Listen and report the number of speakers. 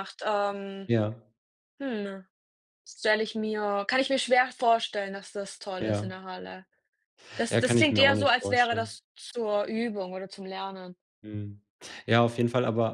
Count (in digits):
2